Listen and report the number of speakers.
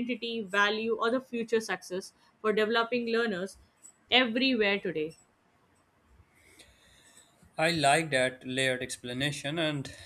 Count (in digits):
2